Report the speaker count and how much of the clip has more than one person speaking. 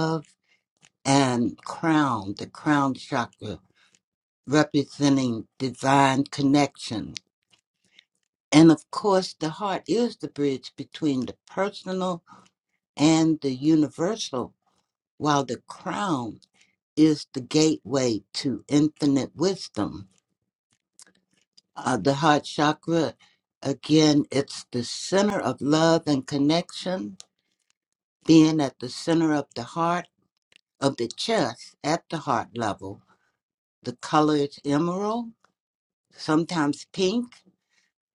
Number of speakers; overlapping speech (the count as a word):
one, no overlap